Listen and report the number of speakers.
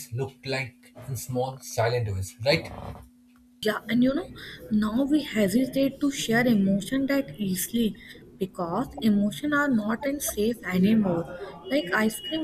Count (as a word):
two